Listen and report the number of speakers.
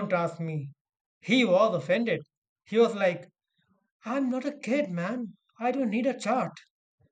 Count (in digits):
1